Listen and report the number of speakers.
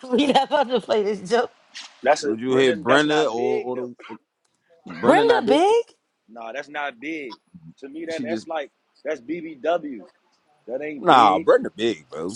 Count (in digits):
3